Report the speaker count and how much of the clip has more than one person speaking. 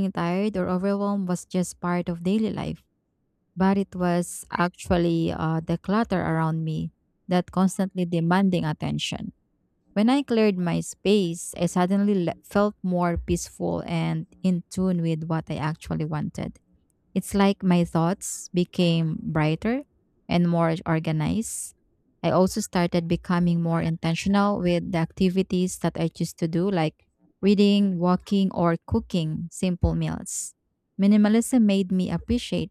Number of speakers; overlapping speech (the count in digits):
1, no overlap